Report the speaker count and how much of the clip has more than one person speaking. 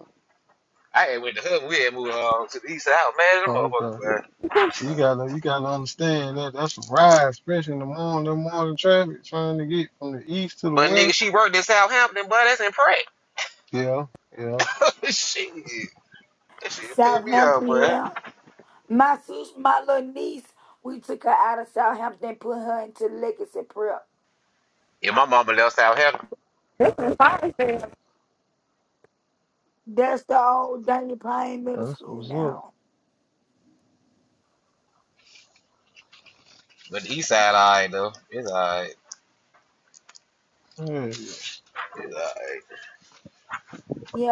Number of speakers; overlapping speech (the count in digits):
4, about 6%